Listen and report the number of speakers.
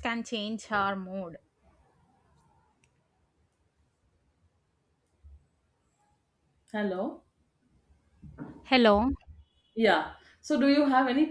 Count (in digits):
2